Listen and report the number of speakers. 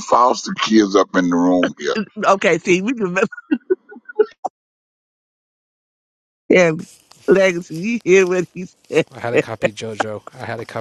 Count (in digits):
3